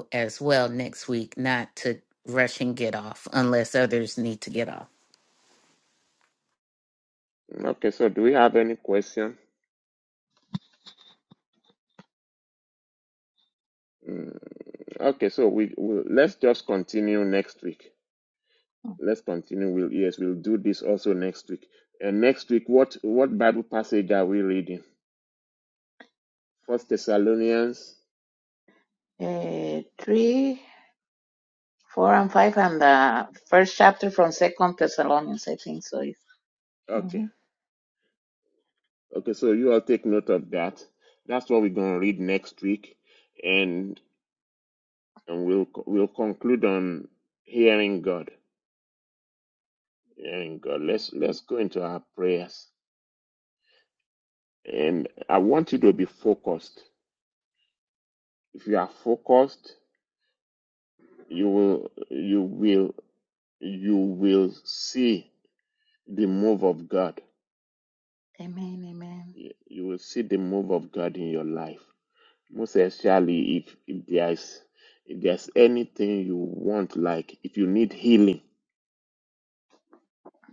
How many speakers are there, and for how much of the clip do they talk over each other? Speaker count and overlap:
3, under 1%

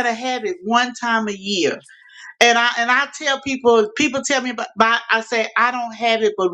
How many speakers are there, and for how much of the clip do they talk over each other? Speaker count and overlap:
1, no overlap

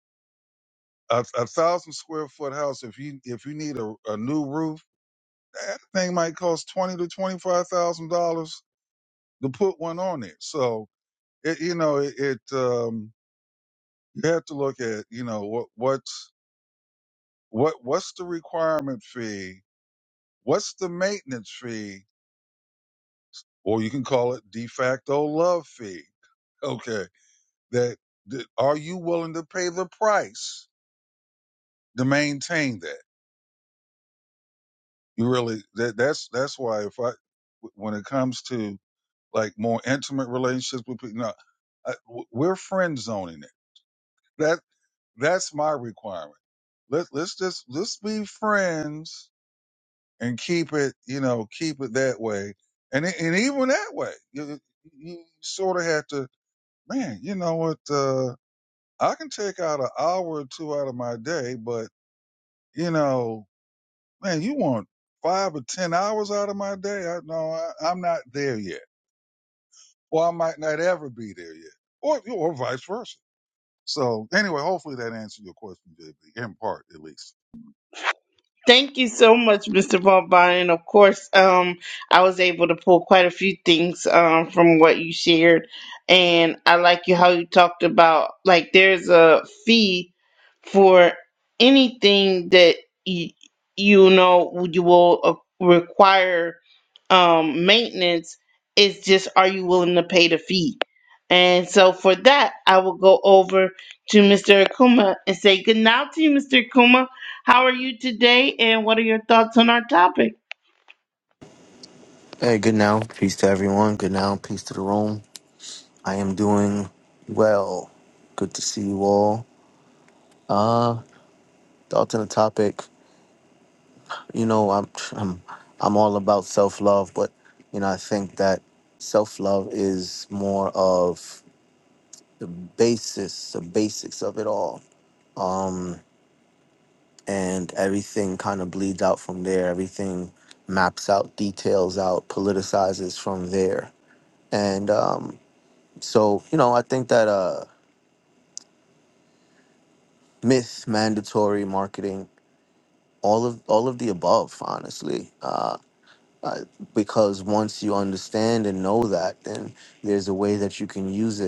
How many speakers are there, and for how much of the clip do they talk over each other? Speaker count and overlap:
3, no overlap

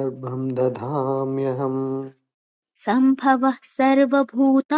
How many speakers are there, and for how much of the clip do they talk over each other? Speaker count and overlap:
2, no overlap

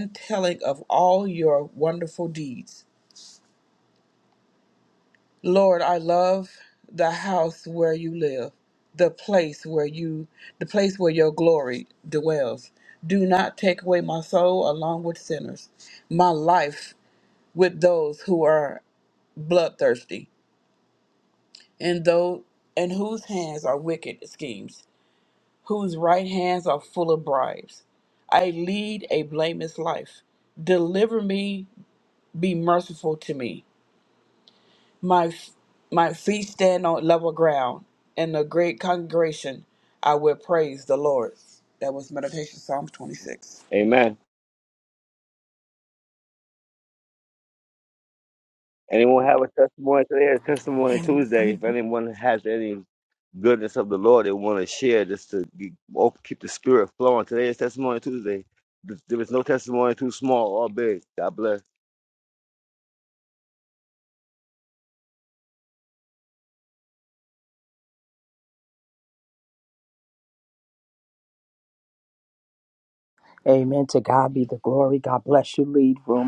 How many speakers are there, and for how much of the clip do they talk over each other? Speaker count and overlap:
3, no overlap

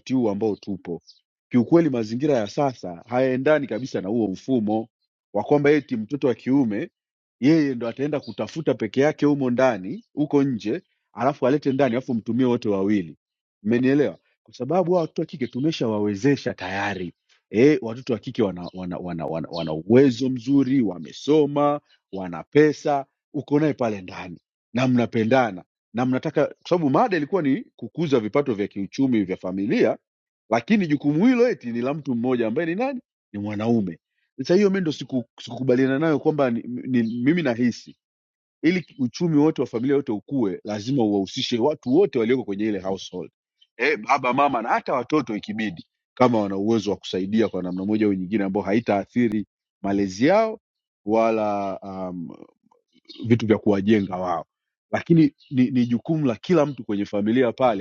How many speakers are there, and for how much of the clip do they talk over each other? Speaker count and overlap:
1, no overlap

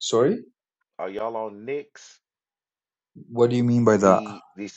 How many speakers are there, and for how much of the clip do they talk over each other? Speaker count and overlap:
2, about 5%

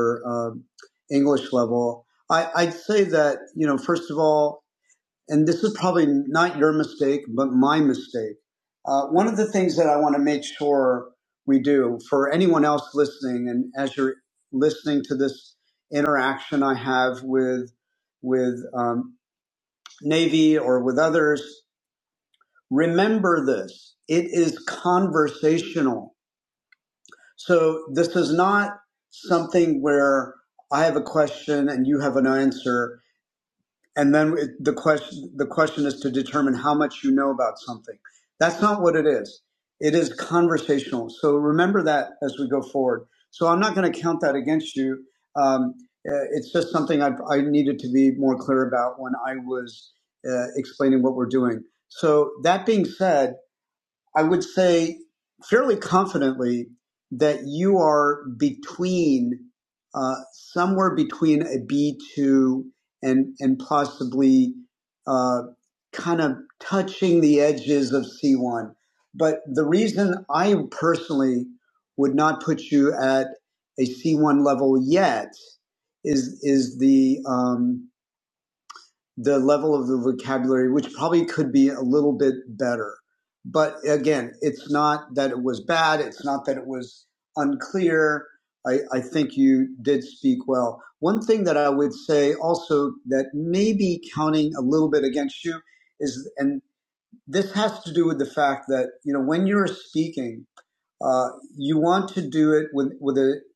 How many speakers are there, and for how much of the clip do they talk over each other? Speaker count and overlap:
1, no overlap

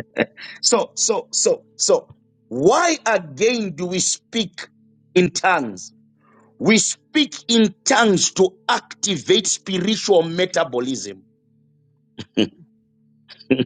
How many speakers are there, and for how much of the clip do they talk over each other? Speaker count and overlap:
1, no overlap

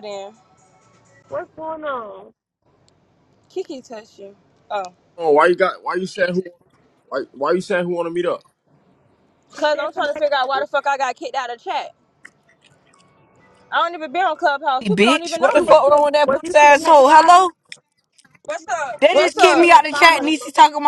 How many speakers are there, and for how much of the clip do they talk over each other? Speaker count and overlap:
4, about 22%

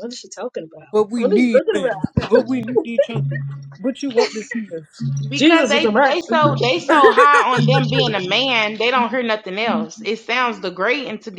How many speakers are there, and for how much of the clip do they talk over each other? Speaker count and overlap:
3, about 18%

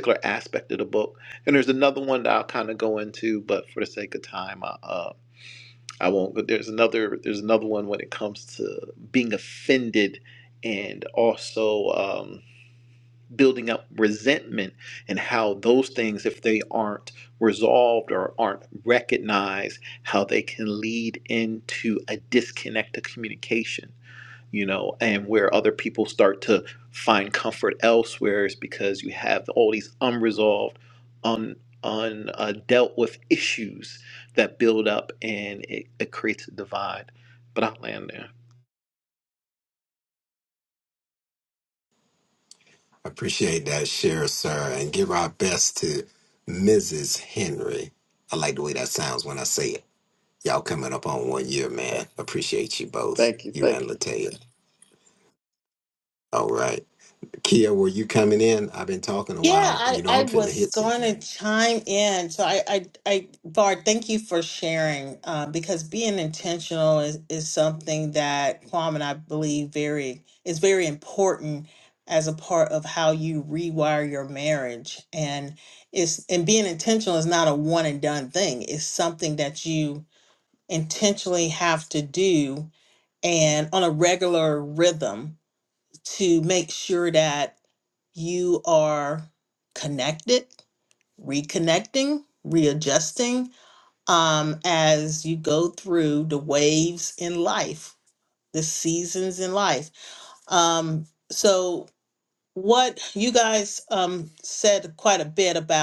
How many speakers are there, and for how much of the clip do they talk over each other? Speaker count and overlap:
3, about 2%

